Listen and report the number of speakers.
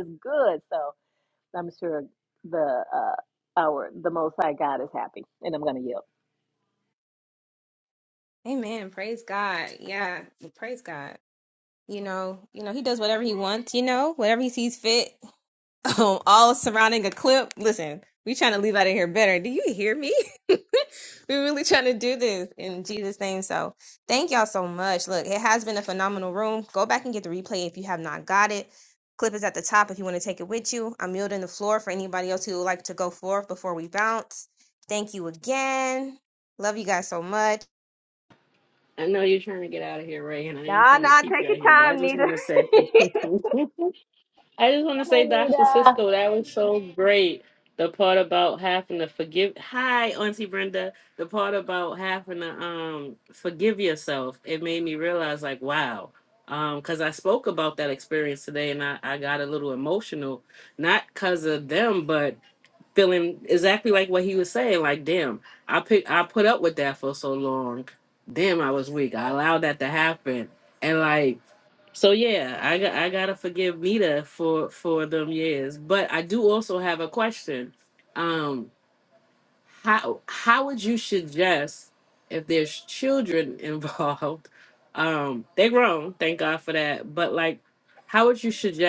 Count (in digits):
3